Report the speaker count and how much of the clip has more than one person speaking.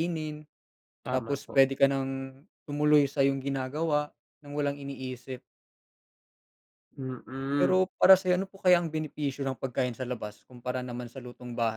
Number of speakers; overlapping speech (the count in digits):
2, about 6%